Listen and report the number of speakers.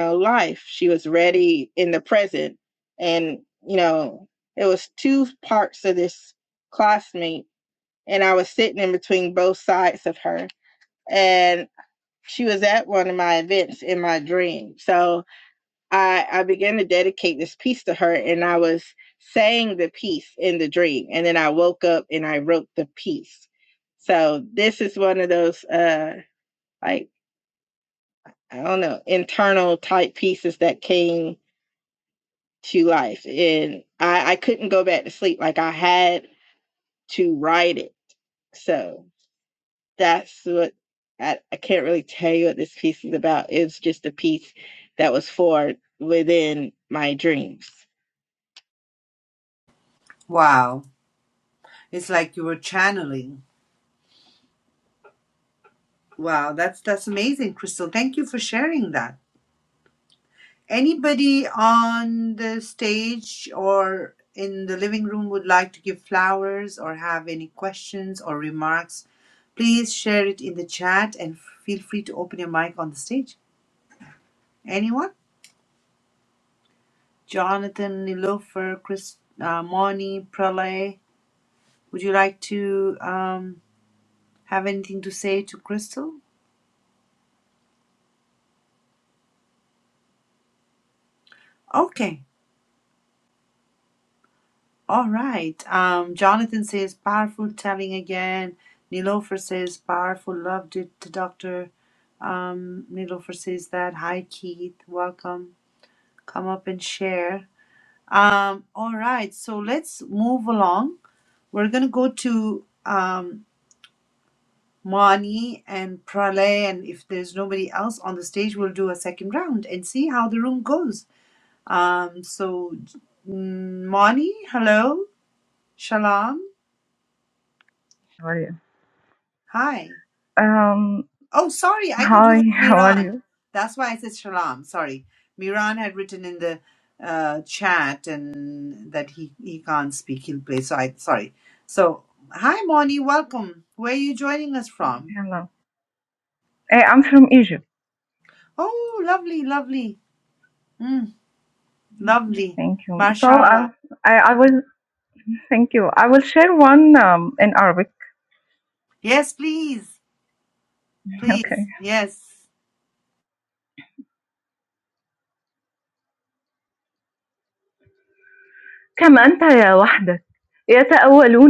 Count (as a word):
three